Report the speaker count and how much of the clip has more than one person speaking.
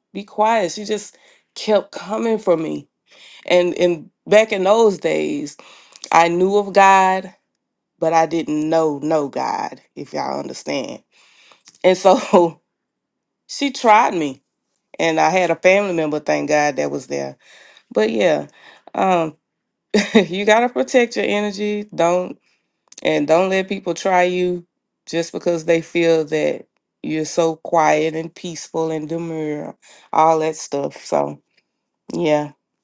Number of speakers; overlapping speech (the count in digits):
1, no overlap